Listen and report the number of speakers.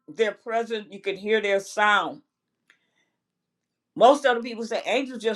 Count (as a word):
one